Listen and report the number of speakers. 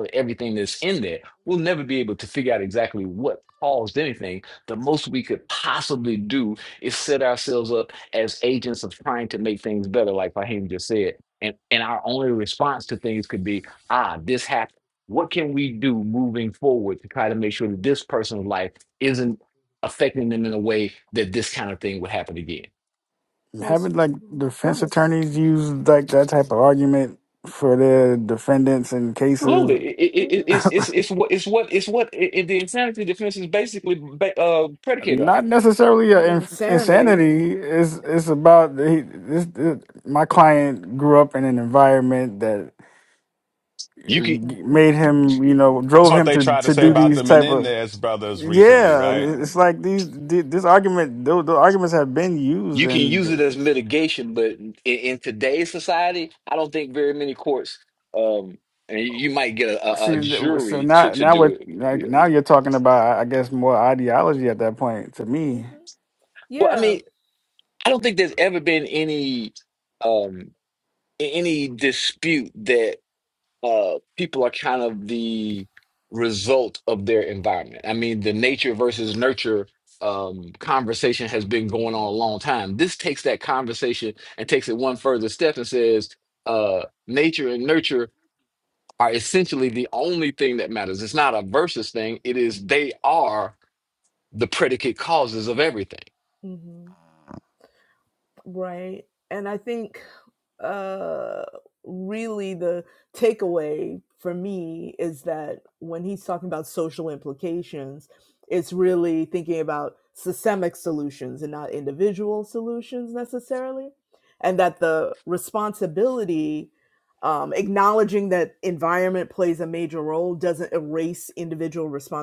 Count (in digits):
4